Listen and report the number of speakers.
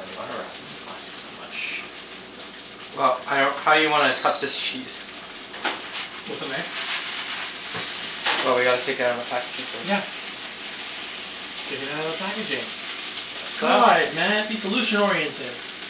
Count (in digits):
3